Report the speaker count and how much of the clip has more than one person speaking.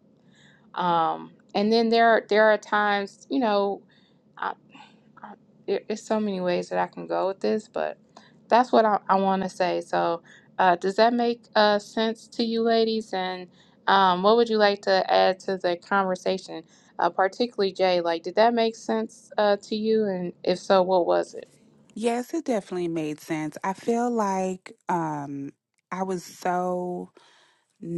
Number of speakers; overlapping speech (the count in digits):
2, no overlap